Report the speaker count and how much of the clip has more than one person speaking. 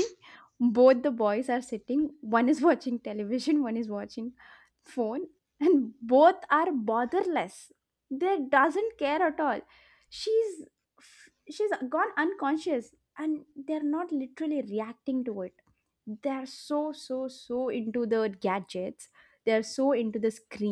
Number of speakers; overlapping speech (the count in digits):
1, no overlap